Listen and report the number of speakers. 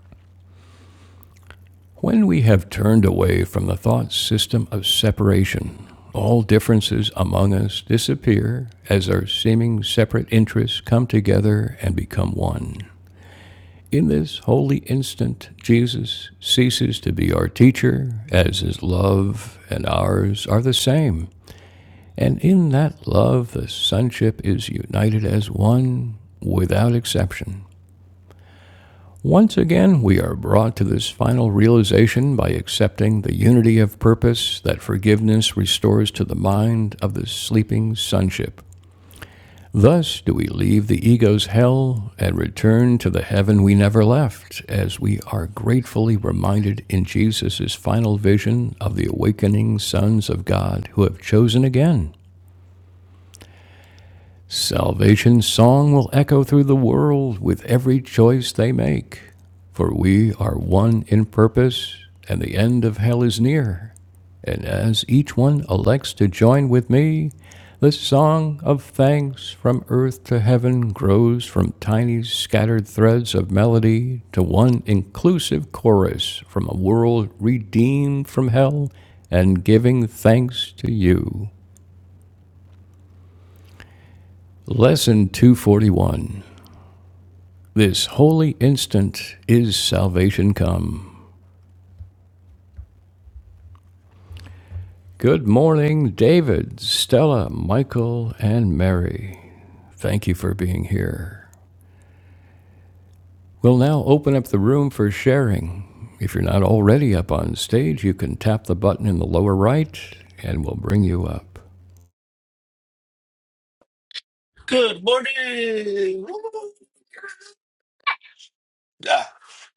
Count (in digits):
2